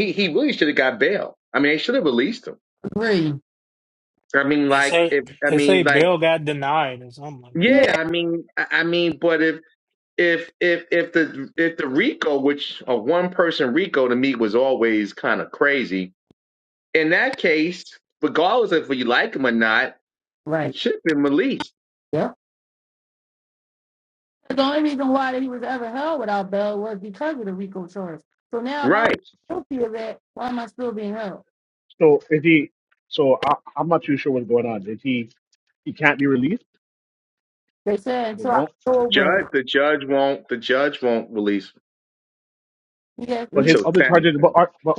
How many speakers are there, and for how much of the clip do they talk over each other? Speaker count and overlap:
four, about 9%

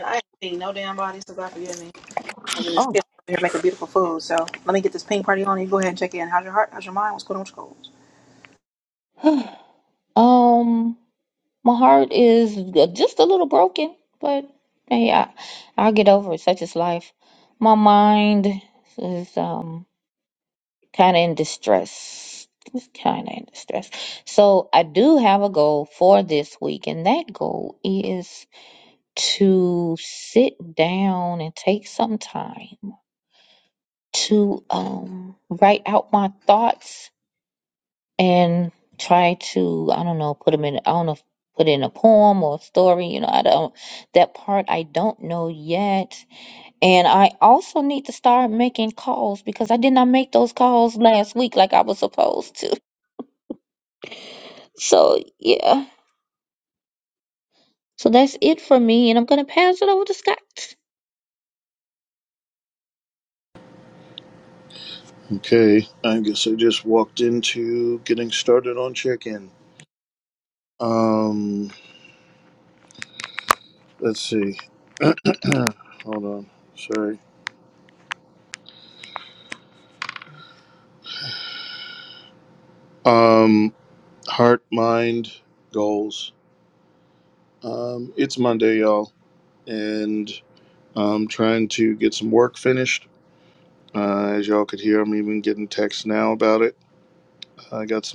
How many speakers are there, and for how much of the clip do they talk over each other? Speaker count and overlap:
three, under 1%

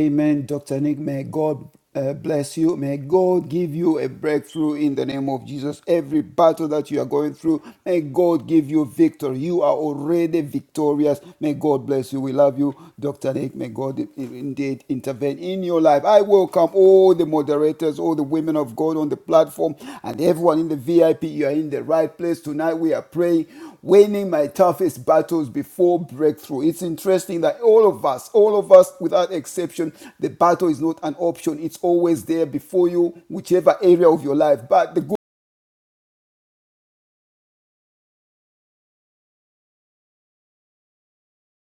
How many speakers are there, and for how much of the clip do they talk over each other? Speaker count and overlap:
one, no overlap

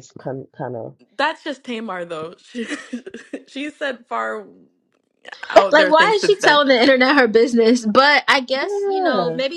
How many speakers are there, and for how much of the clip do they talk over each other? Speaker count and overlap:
three, about 18%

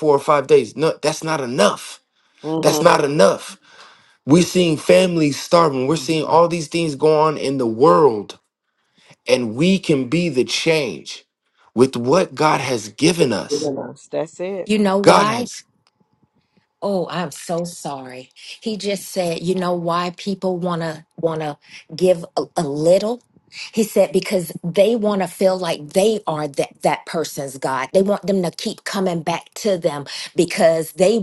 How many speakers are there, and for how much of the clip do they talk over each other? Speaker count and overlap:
three, about 2%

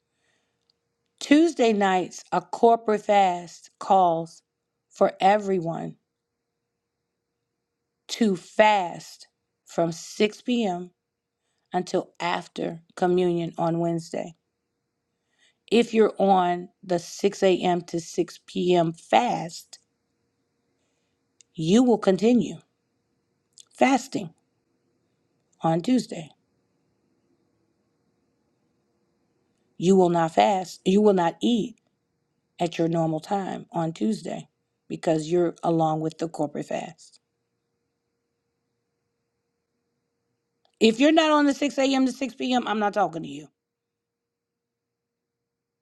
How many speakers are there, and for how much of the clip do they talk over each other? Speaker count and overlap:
one, no overlap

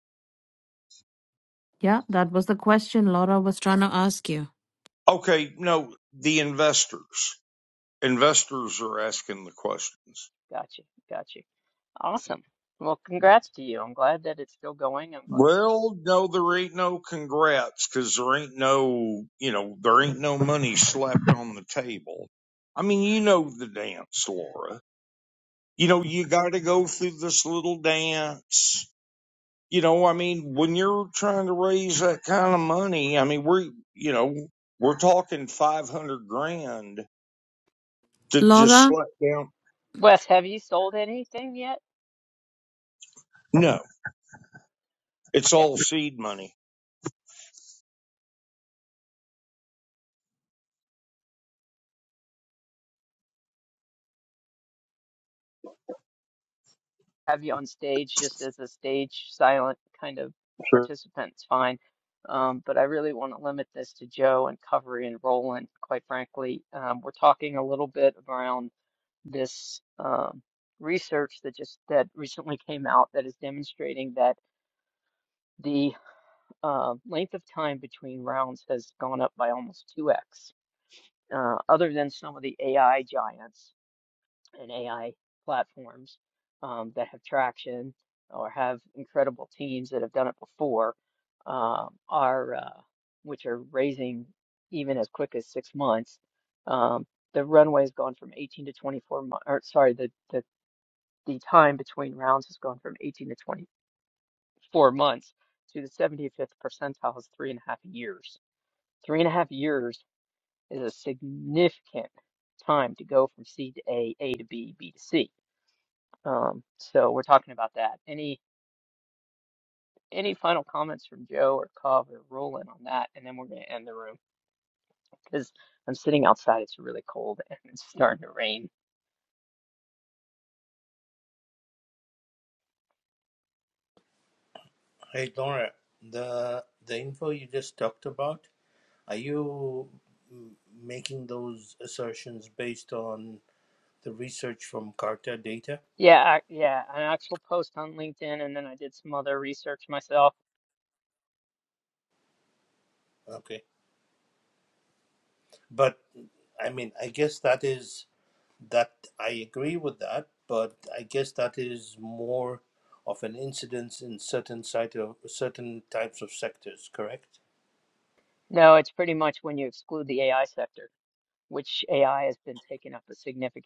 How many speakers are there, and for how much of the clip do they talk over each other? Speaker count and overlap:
four, under 1%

